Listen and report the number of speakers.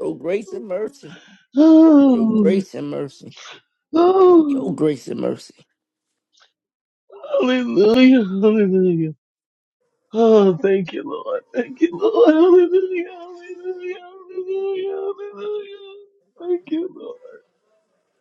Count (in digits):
2